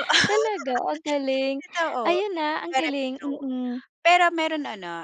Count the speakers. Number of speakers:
2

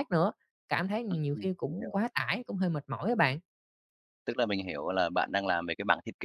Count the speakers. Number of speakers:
2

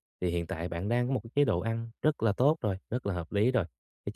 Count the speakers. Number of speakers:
1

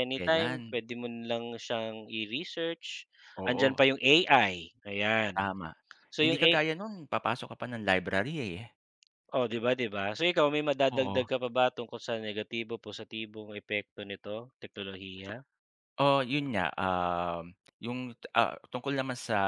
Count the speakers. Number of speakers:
2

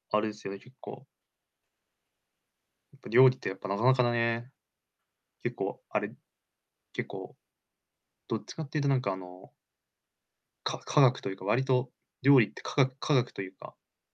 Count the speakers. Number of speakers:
1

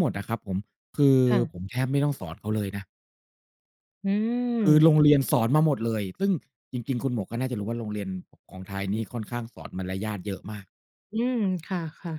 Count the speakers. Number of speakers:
2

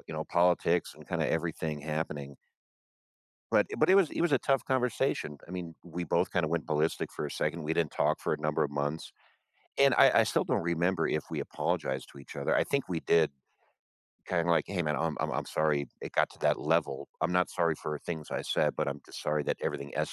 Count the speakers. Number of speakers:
1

